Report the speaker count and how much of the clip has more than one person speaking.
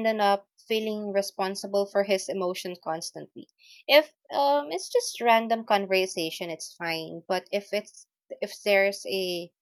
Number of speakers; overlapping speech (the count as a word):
one, no overlap